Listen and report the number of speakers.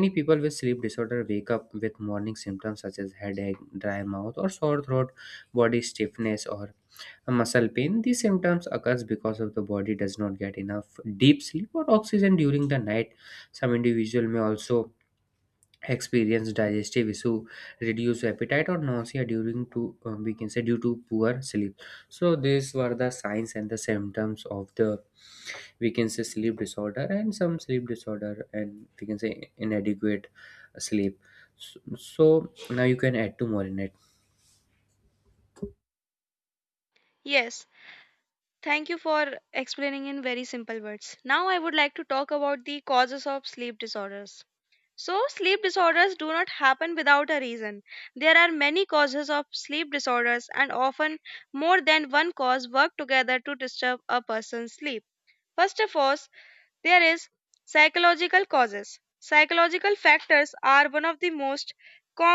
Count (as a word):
two